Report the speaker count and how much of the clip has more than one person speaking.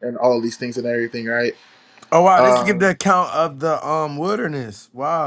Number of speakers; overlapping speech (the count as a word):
two, about 10%